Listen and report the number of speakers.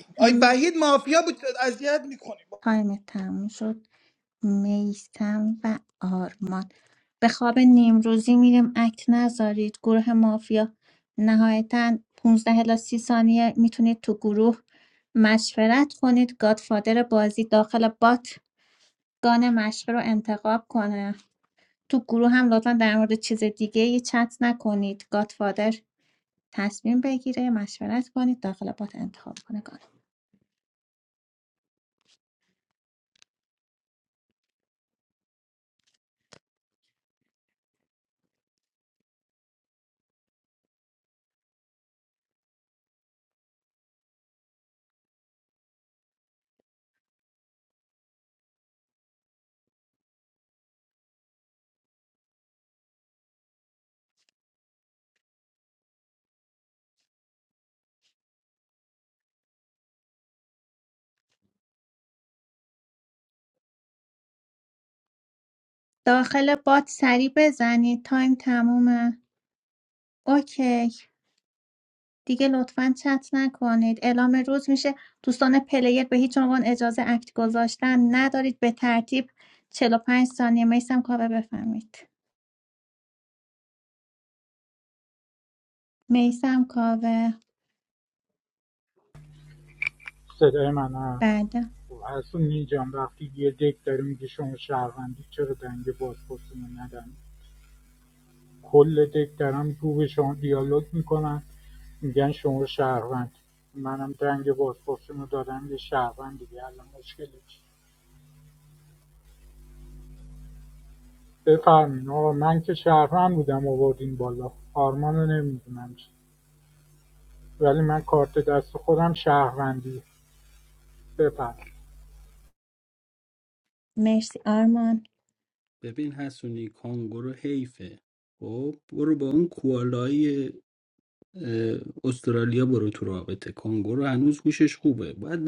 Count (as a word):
four